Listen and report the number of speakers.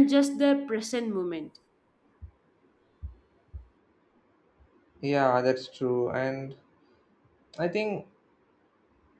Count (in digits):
2